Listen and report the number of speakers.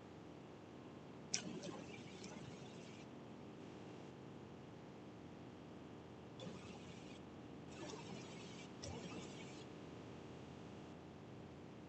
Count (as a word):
zero